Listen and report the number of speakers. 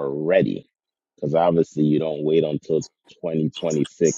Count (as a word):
one